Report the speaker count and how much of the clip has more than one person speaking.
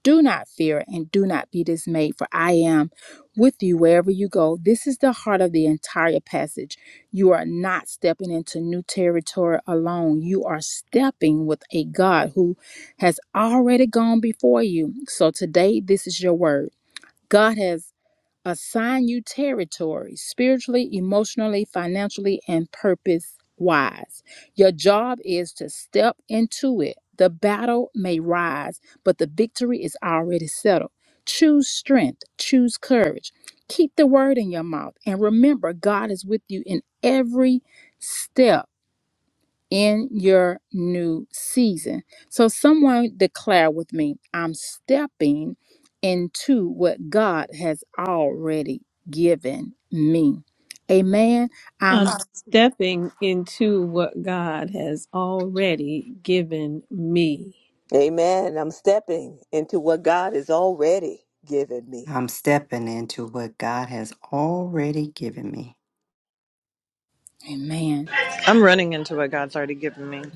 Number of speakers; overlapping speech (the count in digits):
5, under 1%